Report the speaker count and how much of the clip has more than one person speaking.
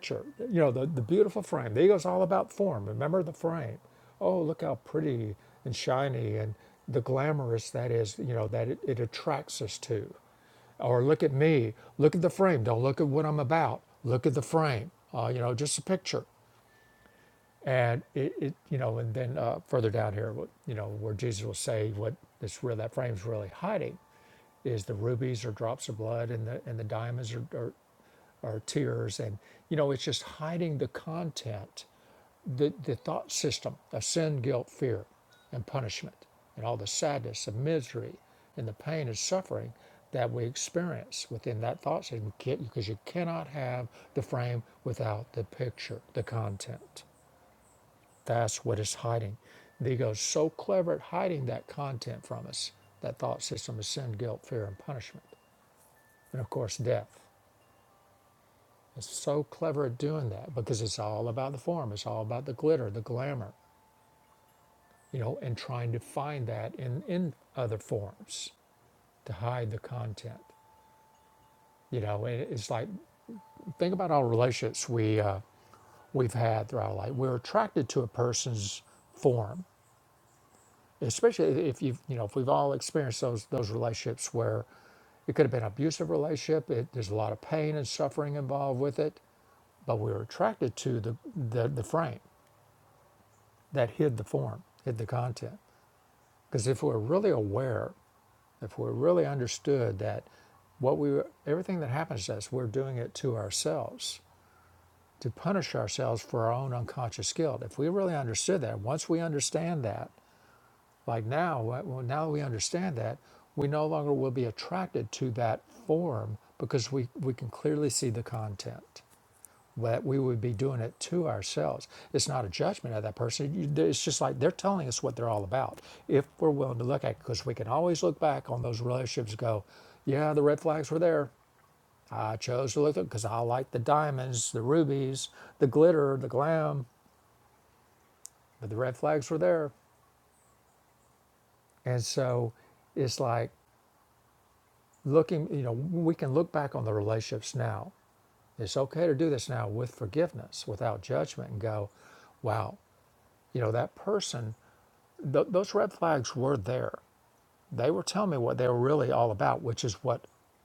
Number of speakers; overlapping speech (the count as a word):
one, no overlap